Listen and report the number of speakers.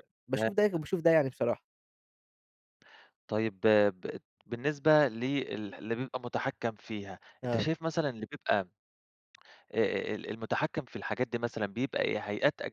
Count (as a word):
two